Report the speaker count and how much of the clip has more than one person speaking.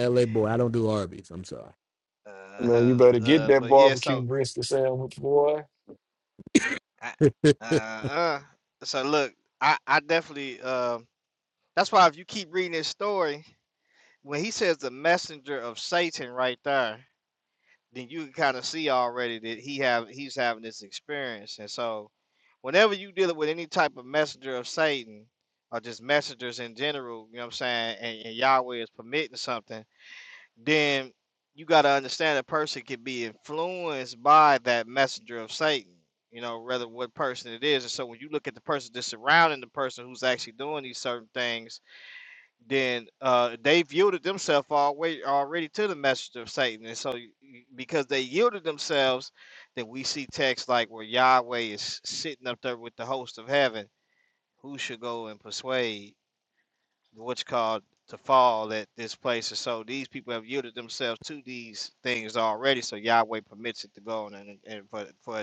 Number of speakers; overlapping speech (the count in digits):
3, about 3%